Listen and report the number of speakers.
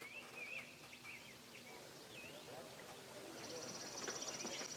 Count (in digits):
0